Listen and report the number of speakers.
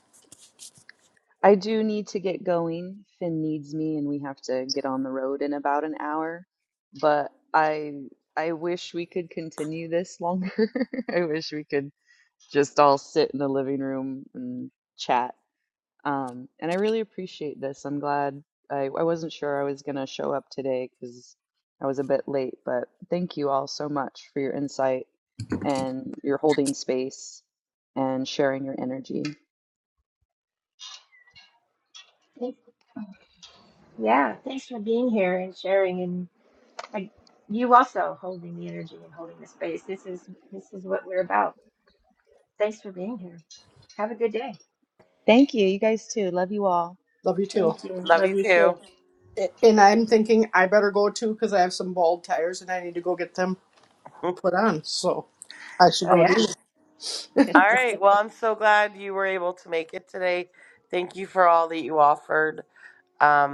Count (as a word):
four